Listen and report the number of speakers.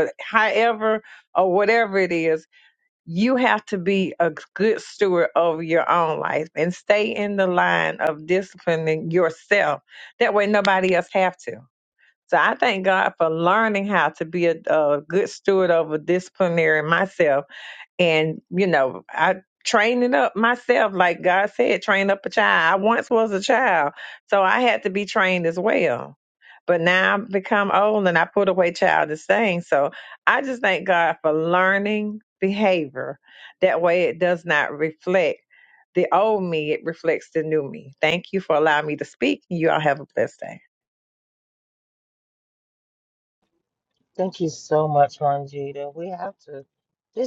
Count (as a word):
two